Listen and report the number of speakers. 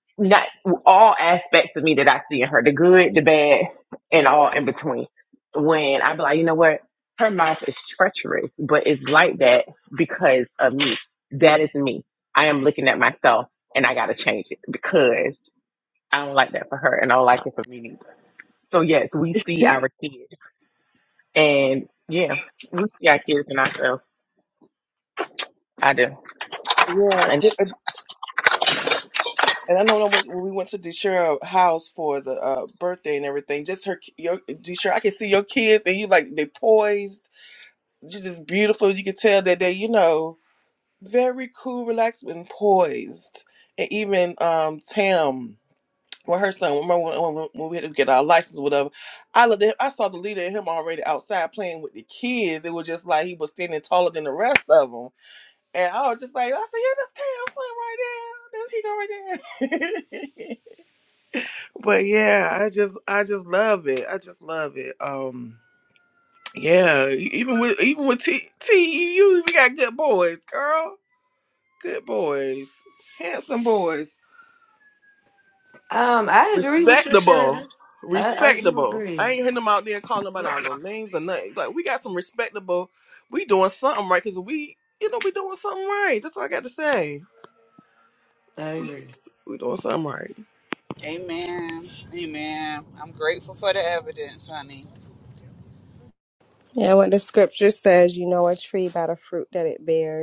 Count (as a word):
five